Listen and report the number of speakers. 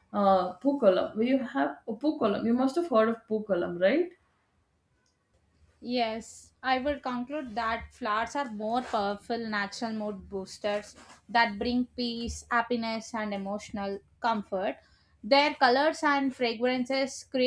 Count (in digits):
2